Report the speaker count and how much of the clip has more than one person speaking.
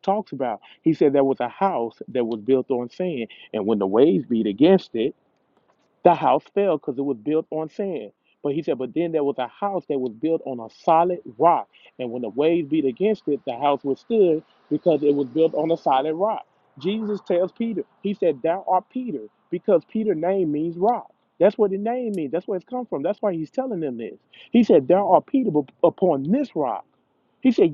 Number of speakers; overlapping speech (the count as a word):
one, no overlap